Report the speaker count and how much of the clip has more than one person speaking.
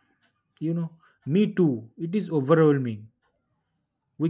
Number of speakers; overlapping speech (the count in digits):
1, no overlap